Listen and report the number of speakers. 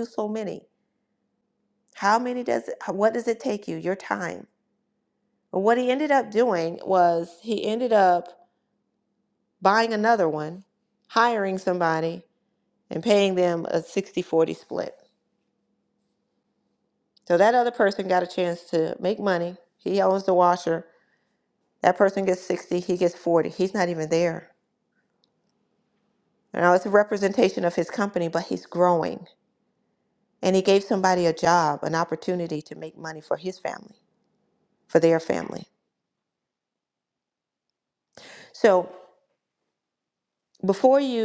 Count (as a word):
one